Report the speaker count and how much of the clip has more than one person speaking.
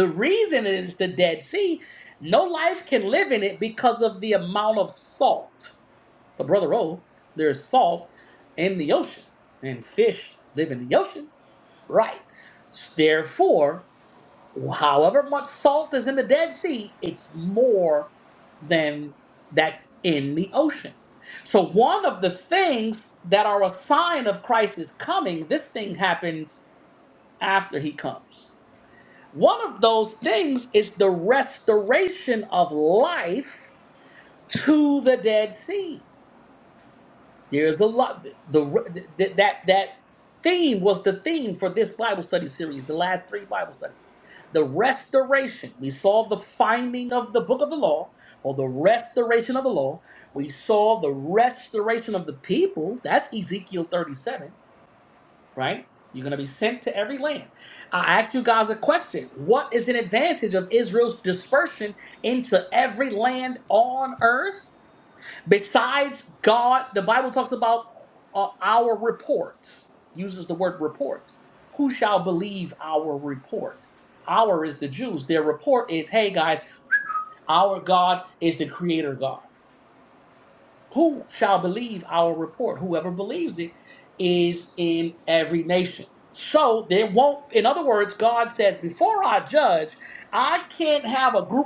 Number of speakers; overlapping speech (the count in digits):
1, no overlap